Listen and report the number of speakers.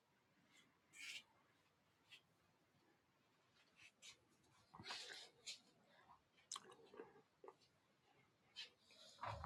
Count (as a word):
zero